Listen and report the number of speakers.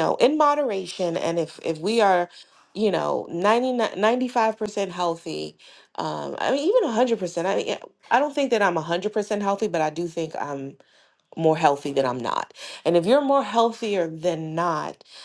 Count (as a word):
one